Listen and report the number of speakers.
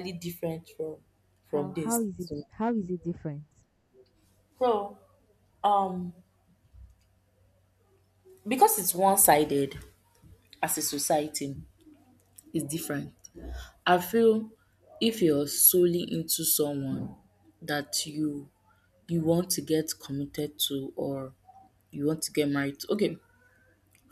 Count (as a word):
two